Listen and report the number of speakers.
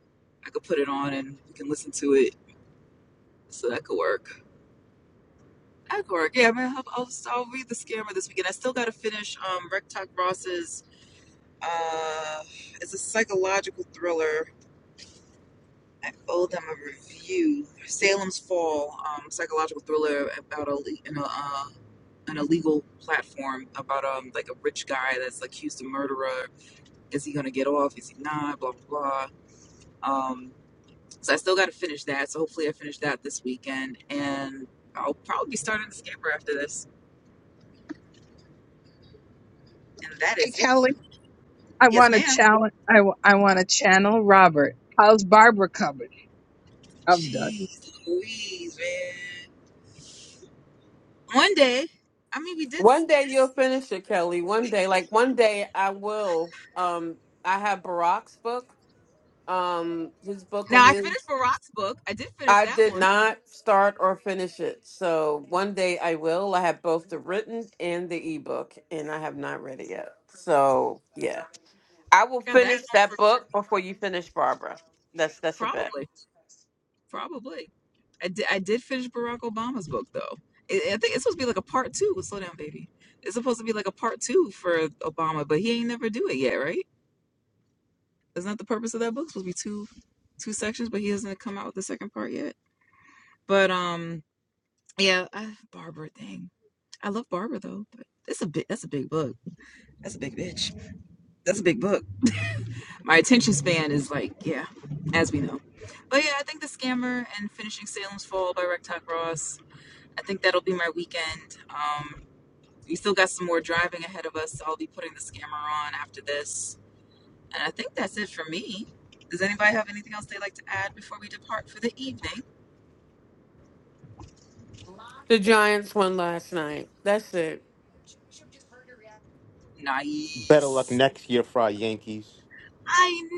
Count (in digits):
4